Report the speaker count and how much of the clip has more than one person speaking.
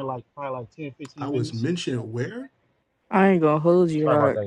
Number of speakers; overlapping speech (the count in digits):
3, about 18%